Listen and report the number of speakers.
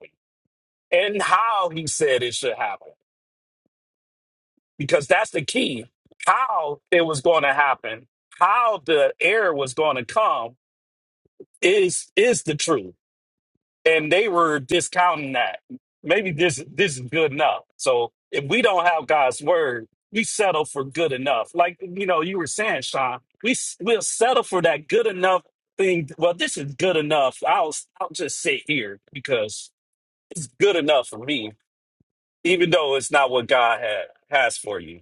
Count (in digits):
1